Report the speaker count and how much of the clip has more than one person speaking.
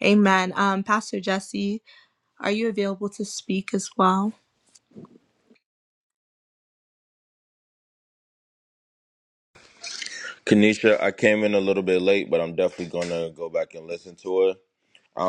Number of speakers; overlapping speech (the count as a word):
two, no overlap